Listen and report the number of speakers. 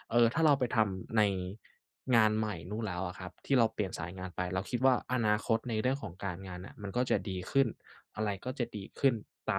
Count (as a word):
one